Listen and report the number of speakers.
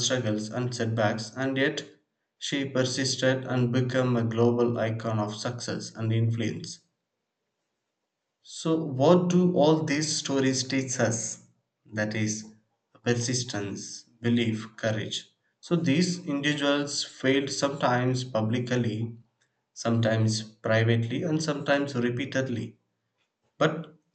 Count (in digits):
1